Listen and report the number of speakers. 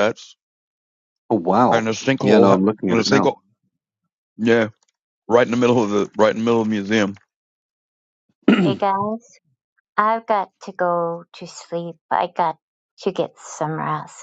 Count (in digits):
3